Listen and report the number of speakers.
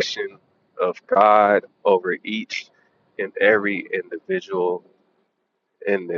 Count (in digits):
1